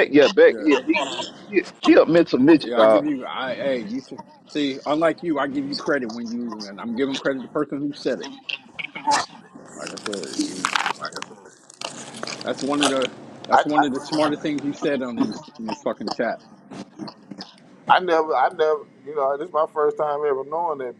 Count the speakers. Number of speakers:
3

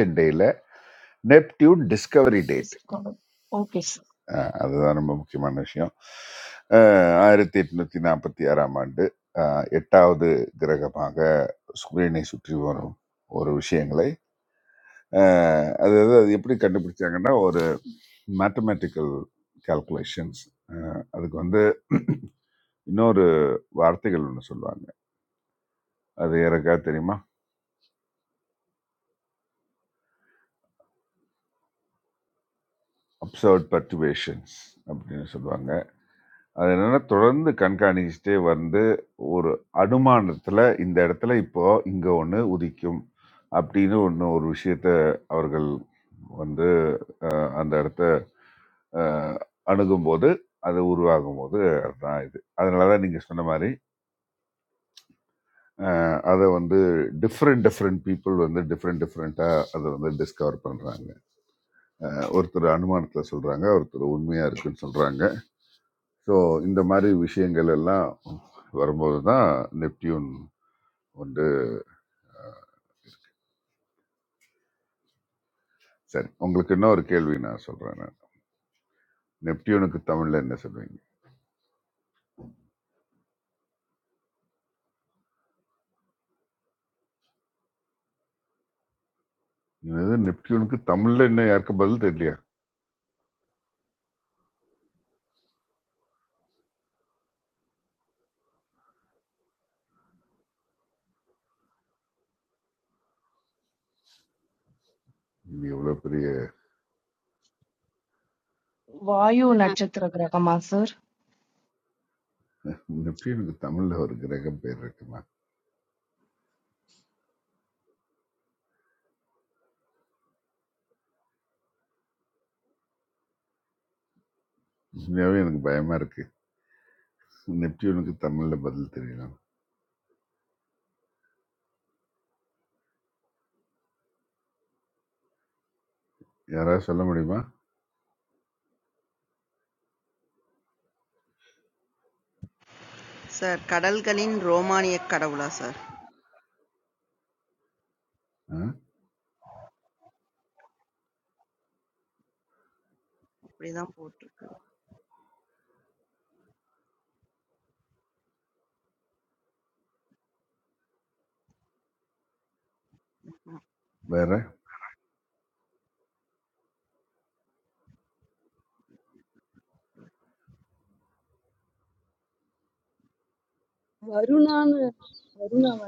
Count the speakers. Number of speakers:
4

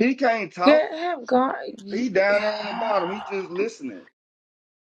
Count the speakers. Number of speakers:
2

